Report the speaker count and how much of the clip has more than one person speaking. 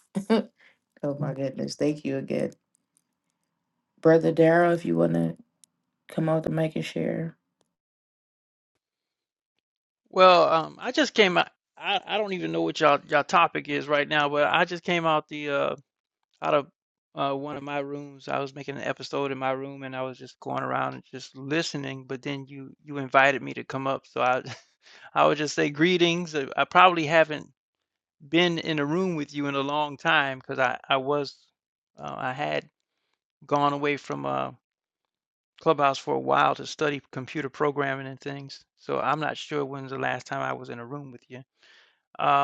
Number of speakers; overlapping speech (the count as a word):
two, no overlap